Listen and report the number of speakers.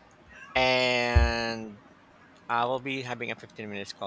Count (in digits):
1